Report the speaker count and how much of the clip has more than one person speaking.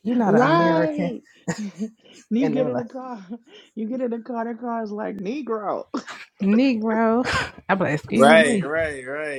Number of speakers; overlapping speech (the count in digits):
3, about 21%